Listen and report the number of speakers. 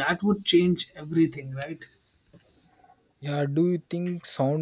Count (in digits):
2